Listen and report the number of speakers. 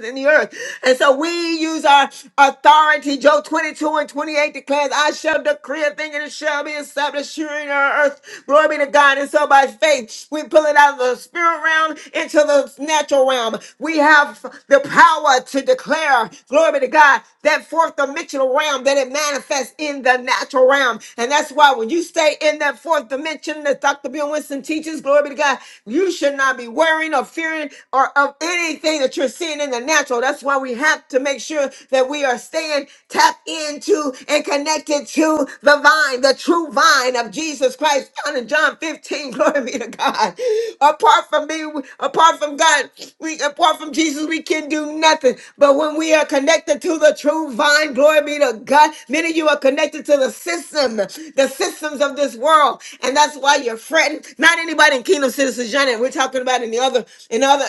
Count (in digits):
1